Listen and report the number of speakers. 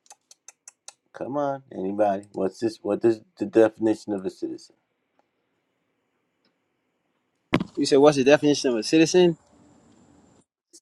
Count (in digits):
2